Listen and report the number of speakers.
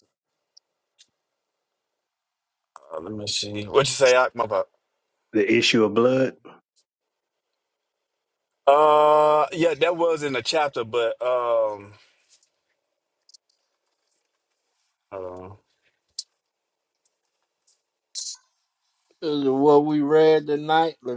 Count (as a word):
three